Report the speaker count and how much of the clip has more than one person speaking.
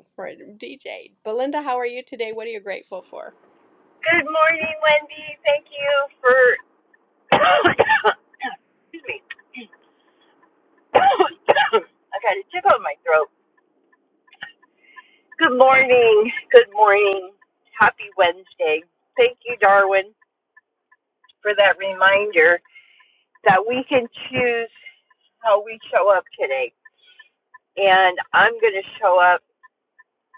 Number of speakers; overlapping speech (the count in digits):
2, no overlap